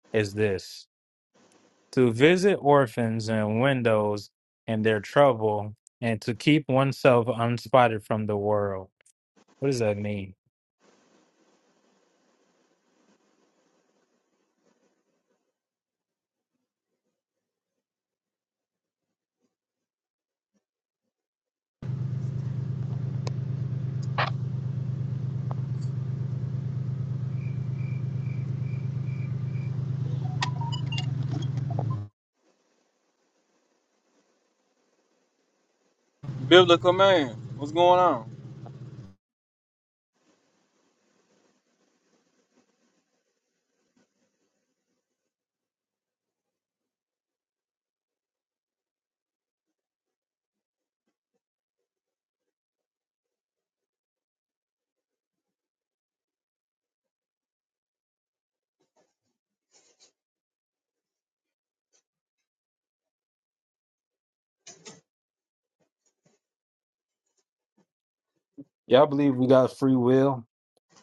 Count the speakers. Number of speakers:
2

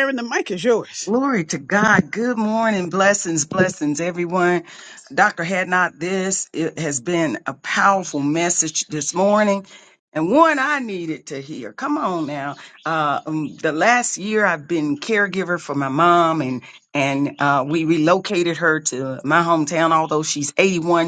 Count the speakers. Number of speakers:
2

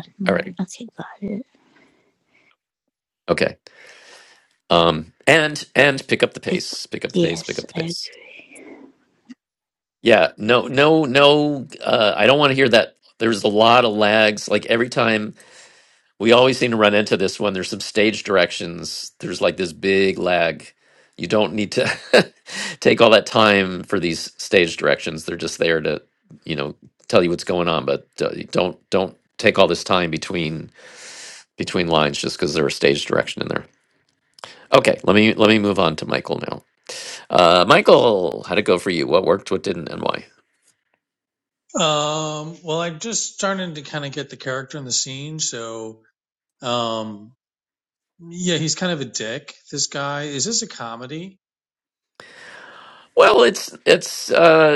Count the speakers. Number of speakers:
3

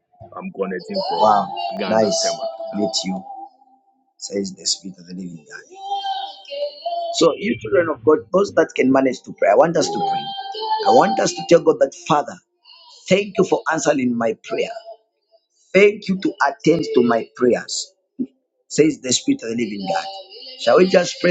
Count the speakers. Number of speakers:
2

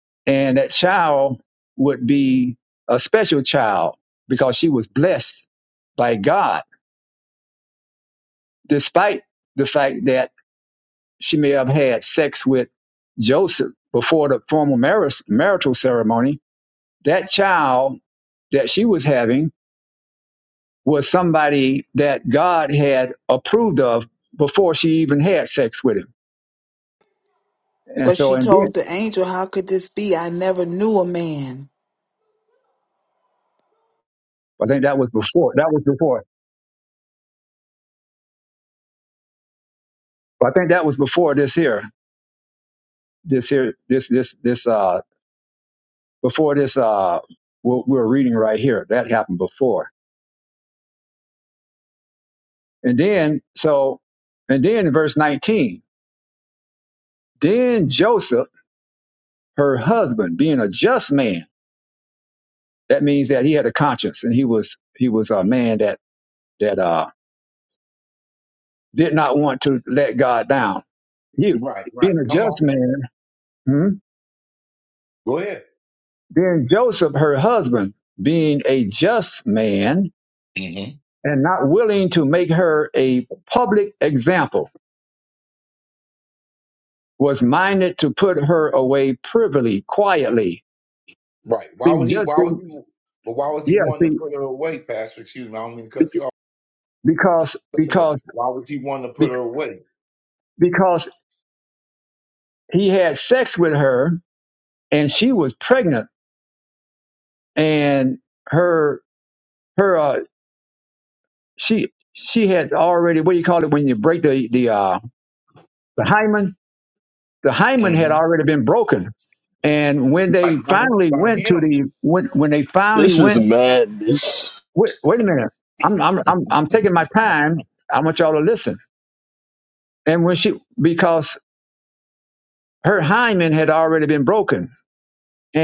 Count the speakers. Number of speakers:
4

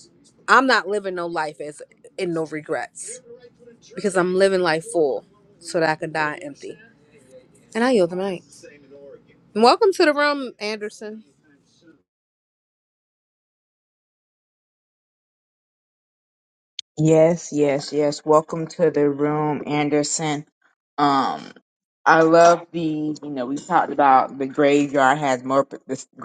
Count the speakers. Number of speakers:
2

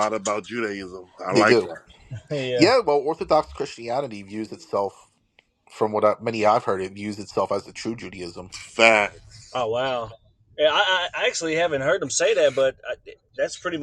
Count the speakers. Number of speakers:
3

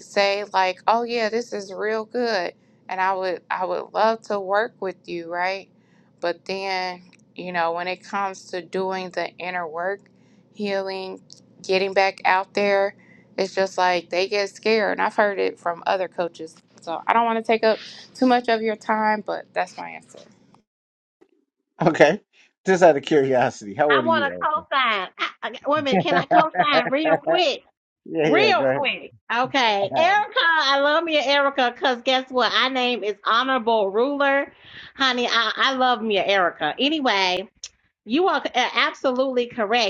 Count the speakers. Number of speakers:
3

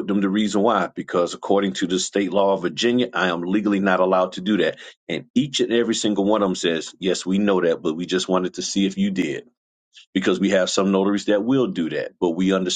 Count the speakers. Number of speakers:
1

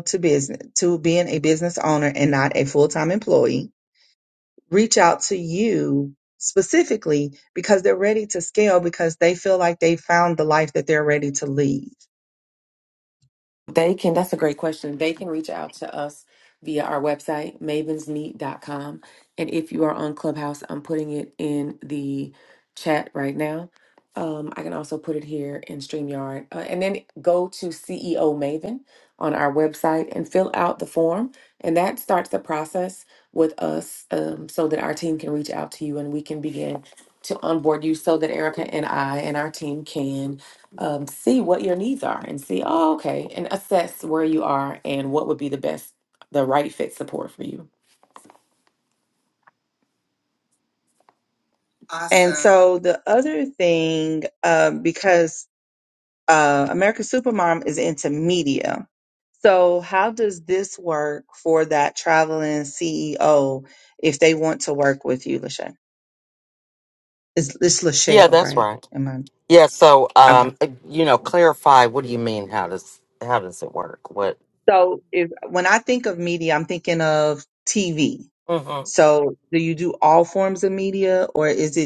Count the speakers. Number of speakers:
3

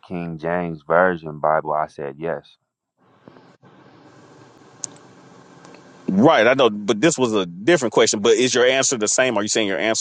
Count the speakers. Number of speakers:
2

